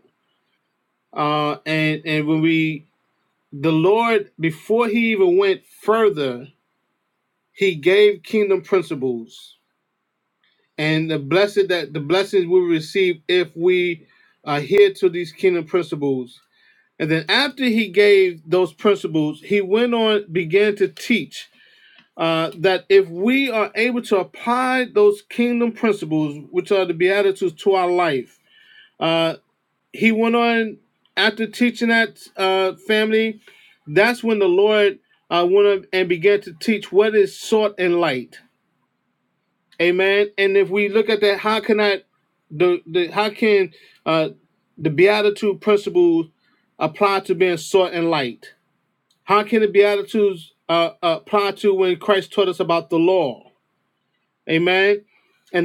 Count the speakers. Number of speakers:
one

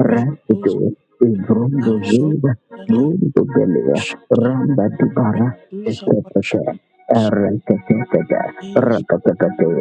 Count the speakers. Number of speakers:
two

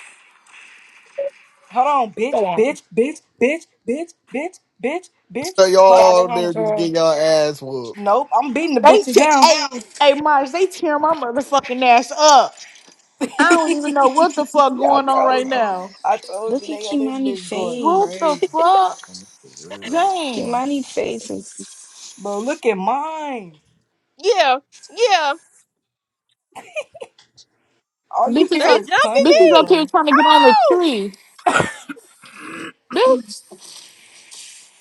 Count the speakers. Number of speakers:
five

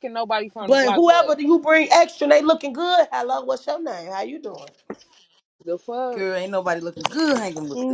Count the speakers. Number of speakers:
three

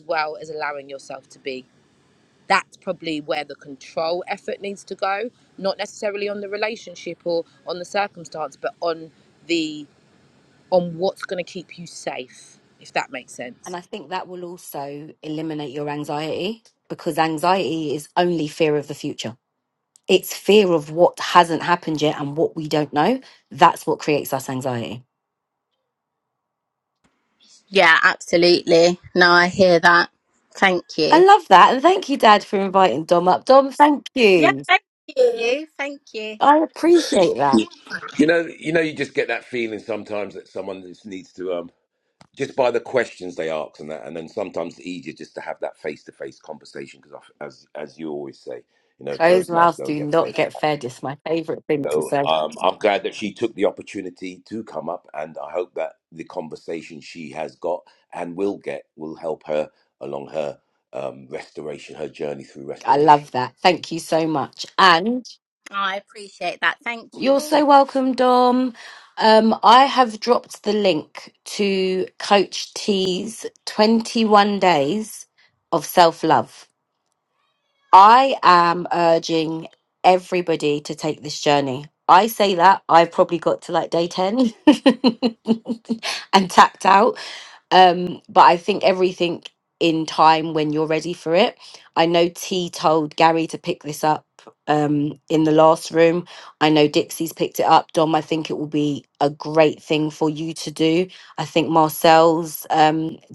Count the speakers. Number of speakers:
four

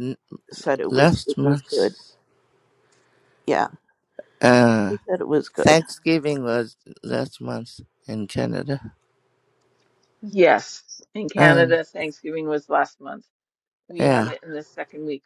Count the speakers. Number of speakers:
three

